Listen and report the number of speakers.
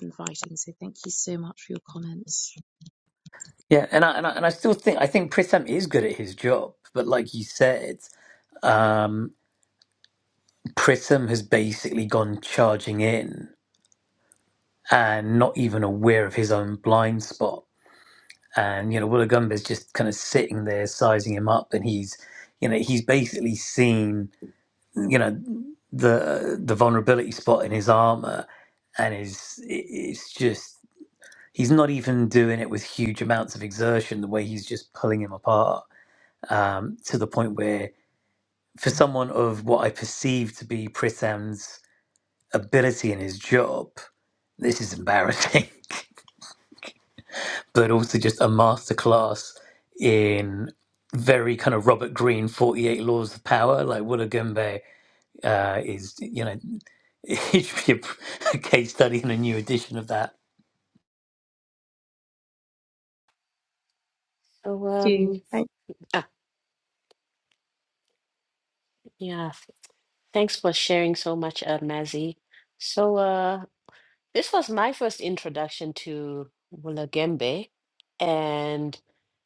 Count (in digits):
3